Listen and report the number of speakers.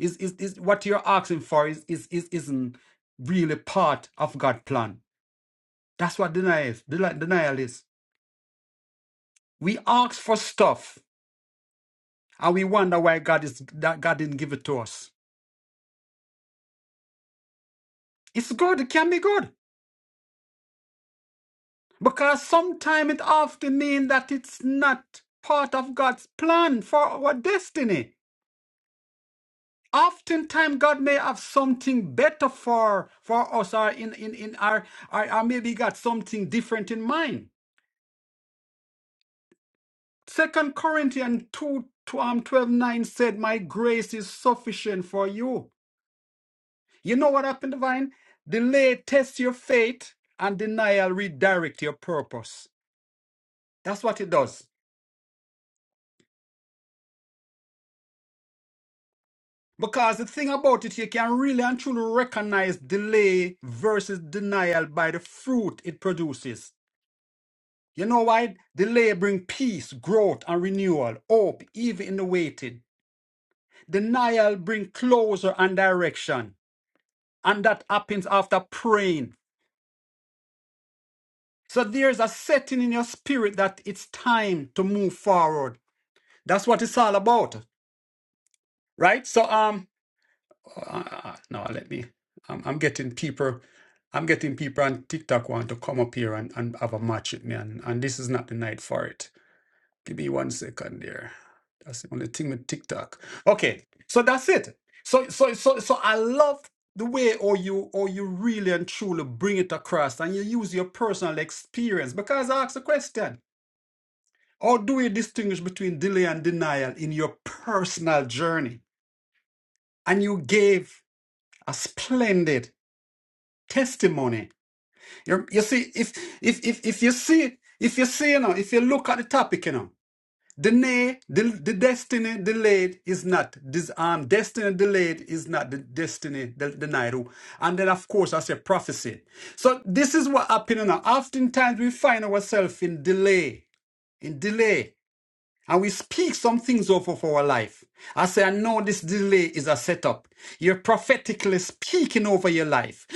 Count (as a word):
one